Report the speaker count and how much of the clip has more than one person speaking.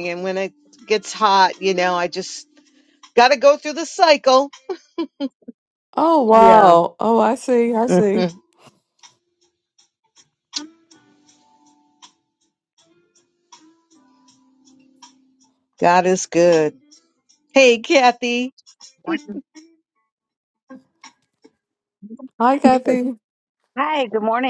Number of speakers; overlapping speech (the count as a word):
three, about 3%